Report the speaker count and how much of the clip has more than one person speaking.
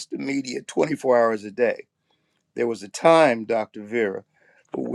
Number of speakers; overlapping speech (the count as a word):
one, no overlap